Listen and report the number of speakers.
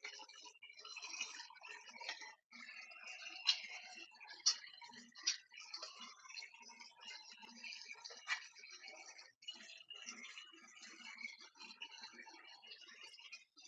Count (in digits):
0